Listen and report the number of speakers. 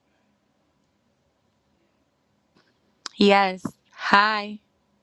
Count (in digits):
1